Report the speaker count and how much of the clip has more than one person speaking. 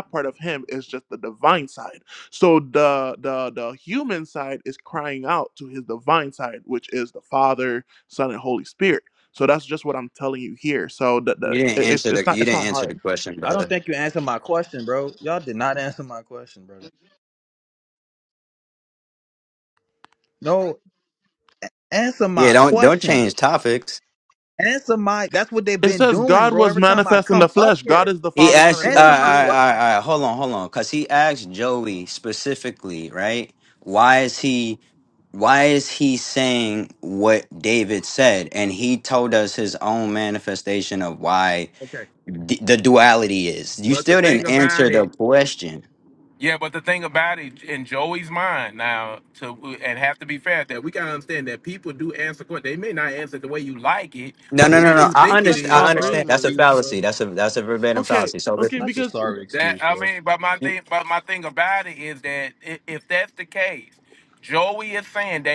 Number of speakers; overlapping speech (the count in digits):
4, about 18%